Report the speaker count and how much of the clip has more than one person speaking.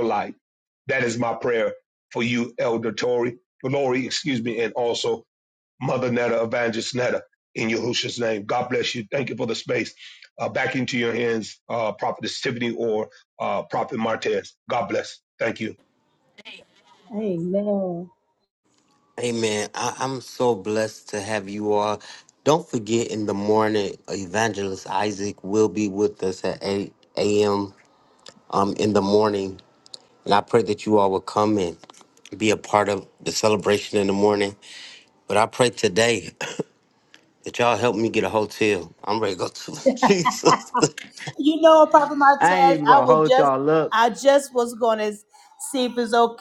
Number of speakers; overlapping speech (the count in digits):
3, about 2%